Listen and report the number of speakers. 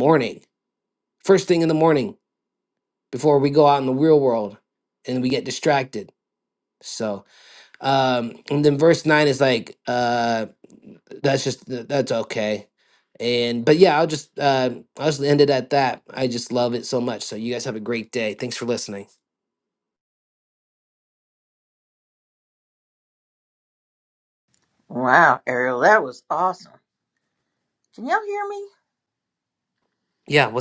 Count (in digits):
2